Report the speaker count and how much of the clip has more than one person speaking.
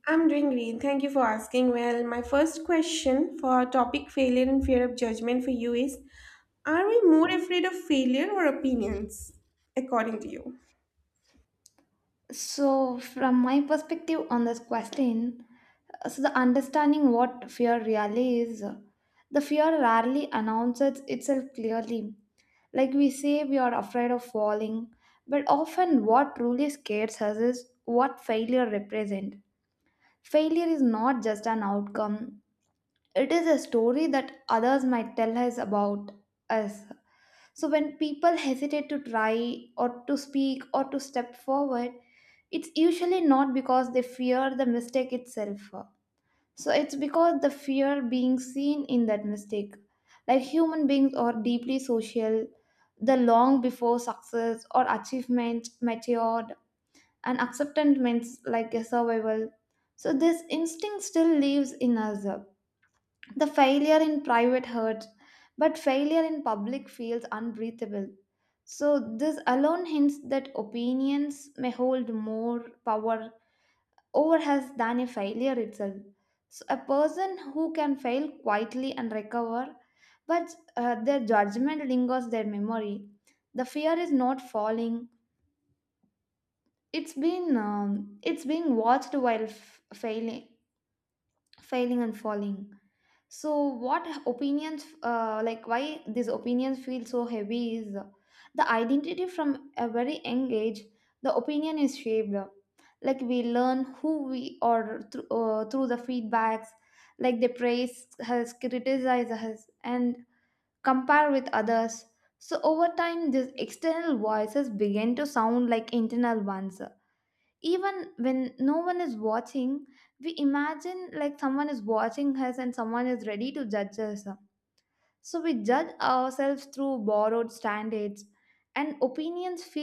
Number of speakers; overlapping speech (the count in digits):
2, no overlap